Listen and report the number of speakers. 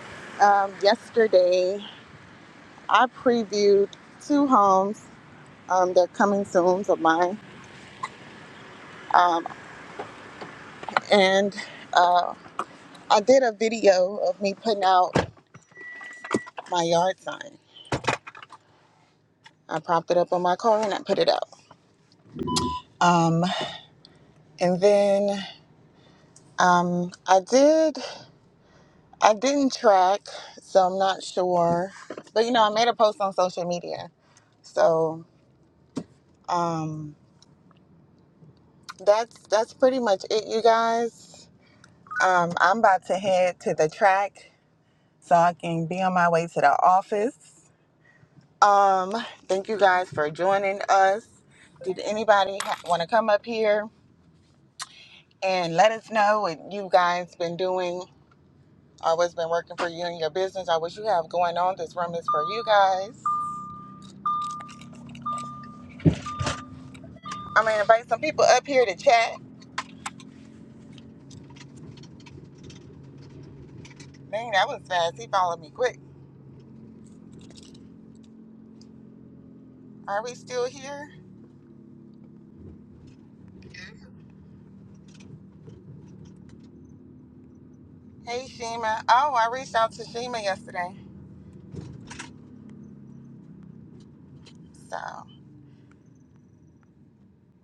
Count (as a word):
one